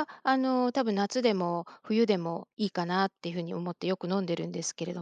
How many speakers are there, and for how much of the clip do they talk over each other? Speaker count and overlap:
one, no overlap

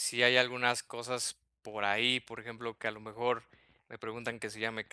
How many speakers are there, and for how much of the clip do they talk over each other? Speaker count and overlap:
one, no overlap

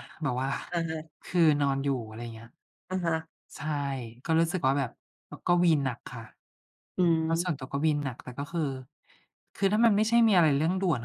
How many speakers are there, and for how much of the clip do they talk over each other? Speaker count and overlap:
two, about 2%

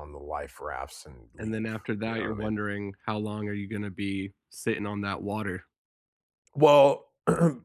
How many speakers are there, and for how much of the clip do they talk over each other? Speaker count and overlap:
two, about 7%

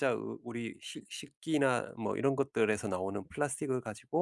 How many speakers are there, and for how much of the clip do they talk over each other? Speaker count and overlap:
one, no overlap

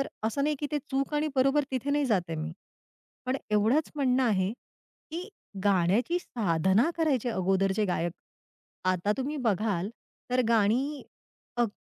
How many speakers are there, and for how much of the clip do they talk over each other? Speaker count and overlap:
one, no overlap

